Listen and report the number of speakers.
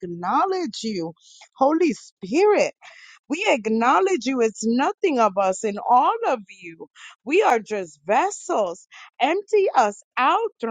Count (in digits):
1